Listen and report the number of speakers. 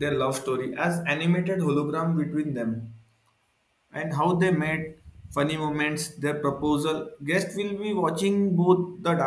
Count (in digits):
1